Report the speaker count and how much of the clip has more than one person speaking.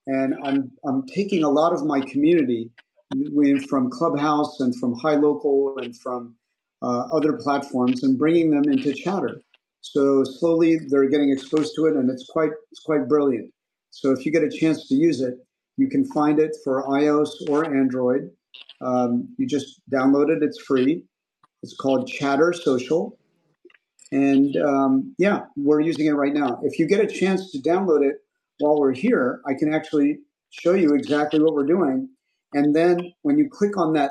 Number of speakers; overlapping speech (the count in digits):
1, no overlap